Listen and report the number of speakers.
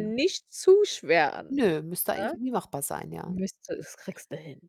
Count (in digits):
2